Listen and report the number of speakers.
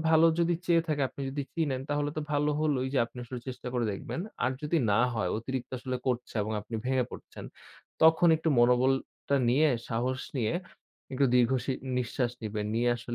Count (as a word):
one